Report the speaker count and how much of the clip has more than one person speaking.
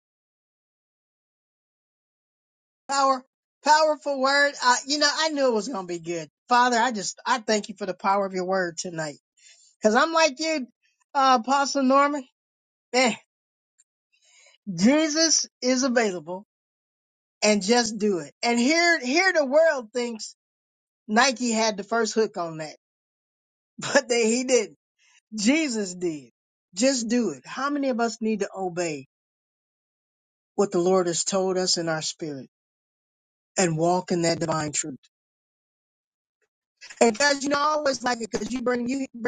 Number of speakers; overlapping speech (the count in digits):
1, no overlap